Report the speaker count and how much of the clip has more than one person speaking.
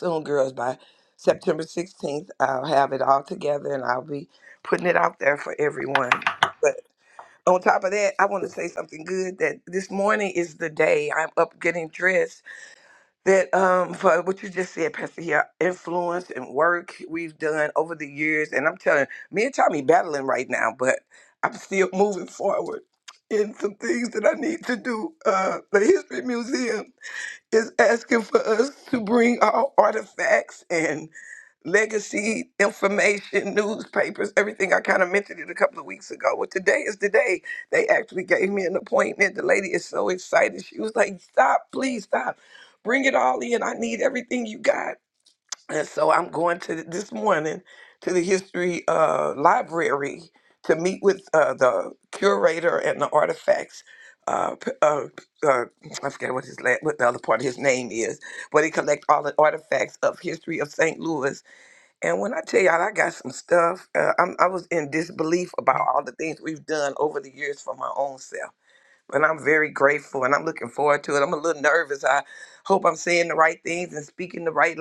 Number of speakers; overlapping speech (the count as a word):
one, no overlap